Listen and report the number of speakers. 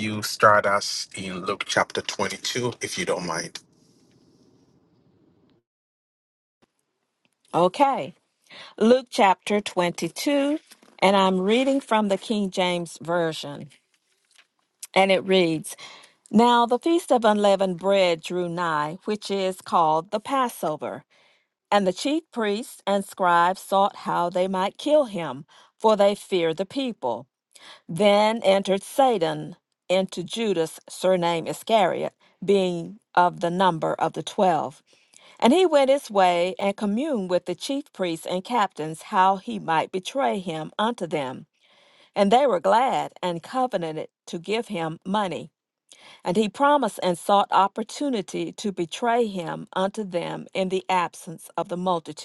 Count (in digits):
2